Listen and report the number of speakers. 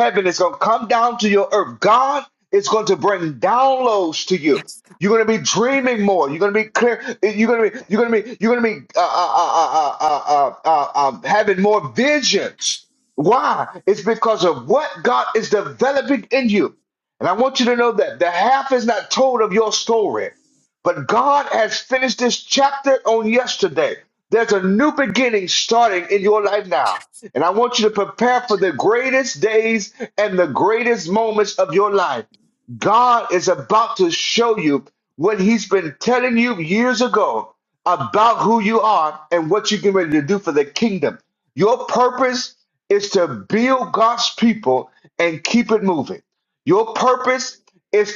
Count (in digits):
1